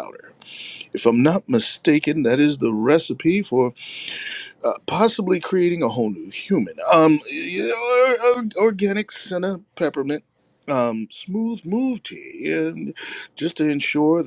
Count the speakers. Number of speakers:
one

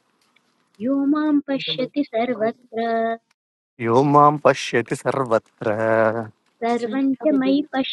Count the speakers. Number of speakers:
two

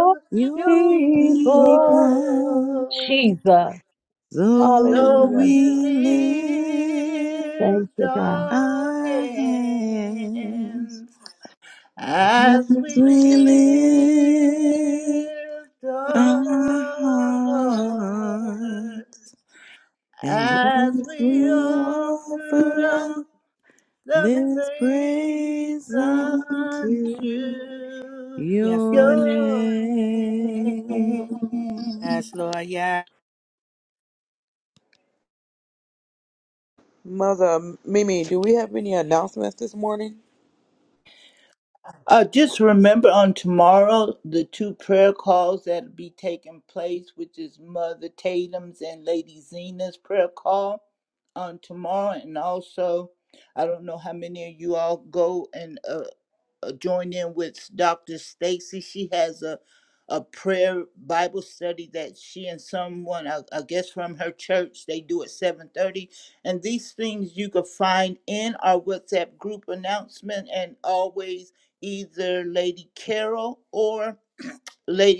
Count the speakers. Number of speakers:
five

